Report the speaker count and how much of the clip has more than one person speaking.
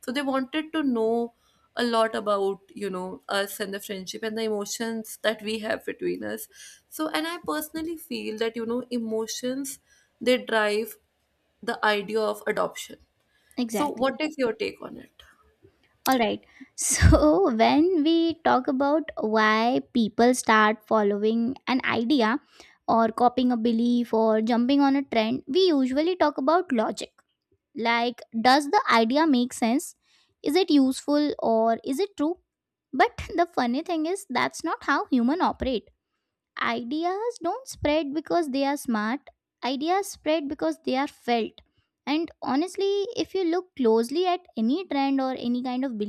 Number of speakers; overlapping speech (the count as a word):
two, about 1%